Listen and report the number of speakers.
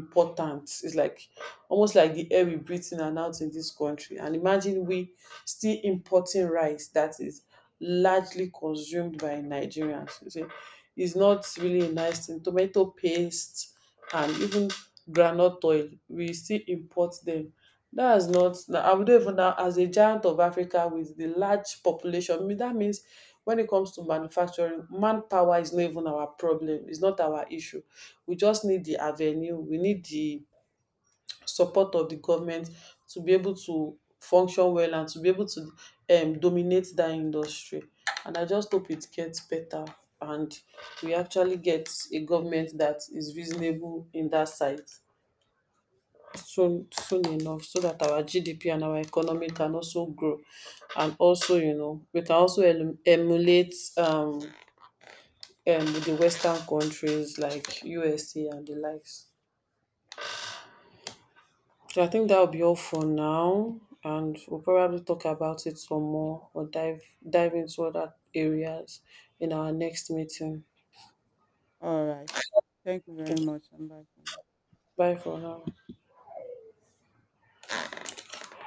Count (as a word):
two